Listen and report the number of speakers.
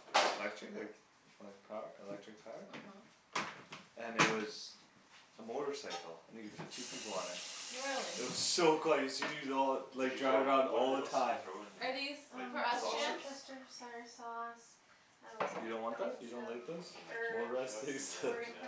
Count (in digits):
4